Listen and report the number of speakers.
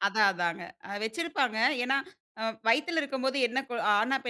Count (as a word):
one